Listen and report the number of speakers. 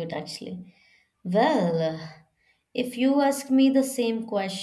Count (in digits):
1